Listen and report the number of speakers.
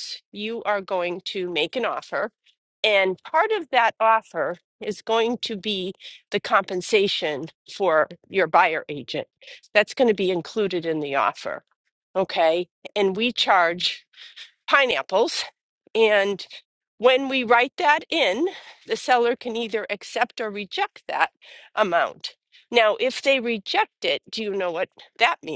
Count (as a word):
one